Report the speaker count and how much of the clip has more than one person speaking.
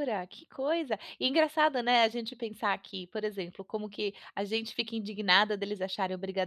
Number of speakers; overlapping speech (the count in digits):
1, no overlap